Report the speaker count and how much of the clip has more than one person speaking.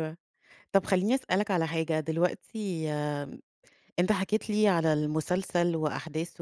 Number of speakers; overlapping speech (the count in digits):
1, no overlap